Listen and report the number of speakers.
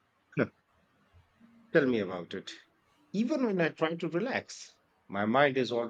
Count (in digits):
1